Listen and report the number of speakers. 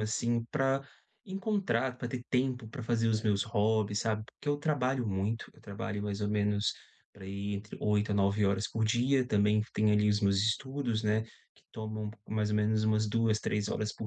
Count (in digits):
1